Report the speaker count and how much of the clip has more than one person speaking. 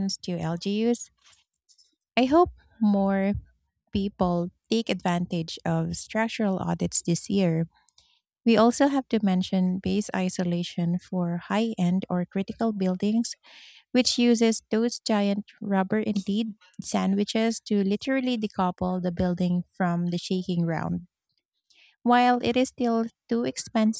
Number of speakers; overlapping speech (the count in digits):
1, no overlap